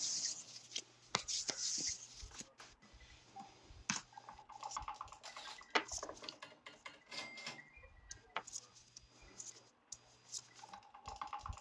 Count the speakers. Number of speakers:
zero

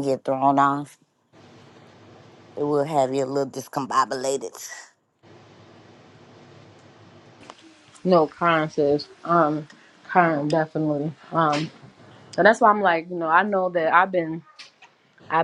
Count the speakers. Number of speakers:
two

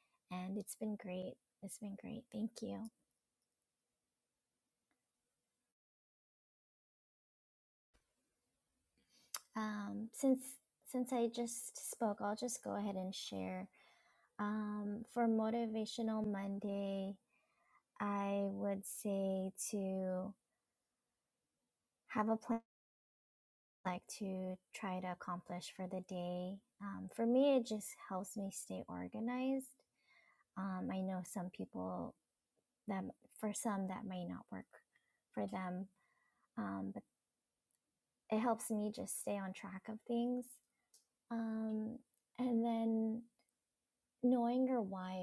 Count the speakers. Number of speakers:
one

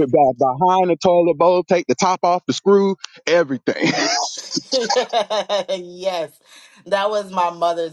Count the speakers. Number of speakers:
two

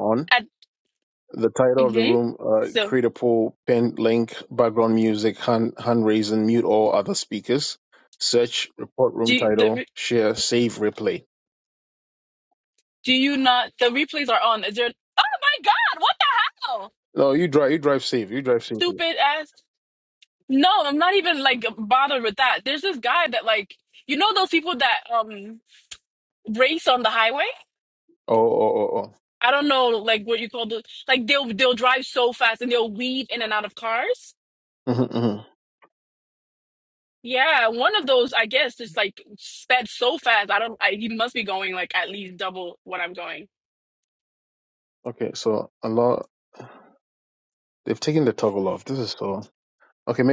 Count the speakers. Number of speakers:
two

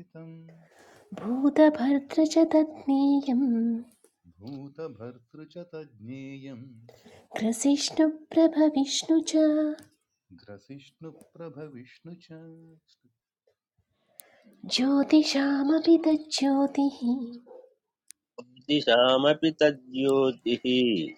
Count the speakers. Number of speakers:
three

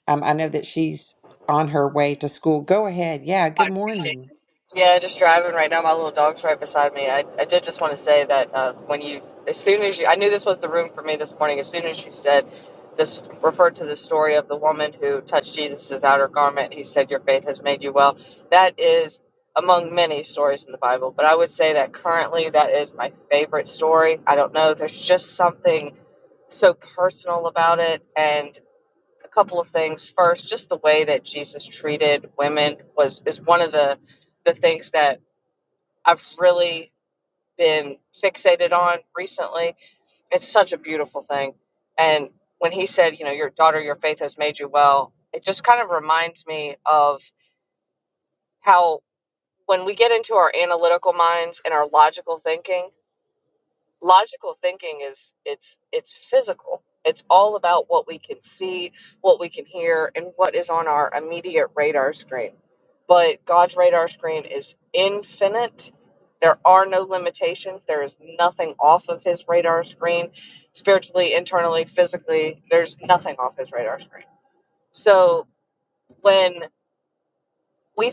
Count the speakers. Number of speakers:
two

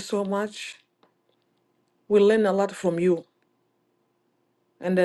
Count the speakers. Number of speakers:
one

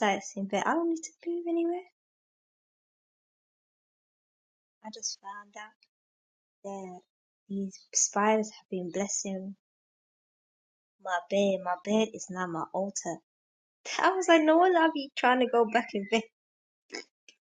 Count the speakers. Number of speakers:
one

